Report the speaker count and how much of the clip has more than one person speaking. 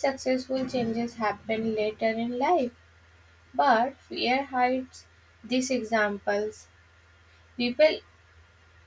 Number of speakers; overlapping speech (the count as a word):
one, no overlap